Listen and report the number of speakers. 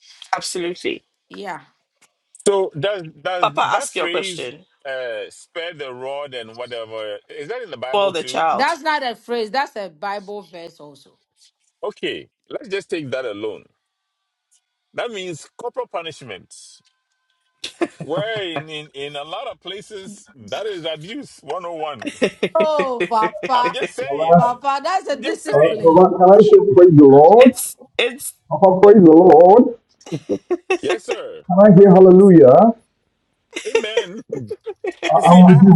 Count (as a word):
four